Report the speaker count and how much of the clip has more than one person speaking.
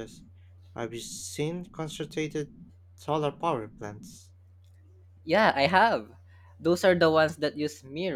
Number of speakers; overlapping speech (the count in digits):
2, no overlap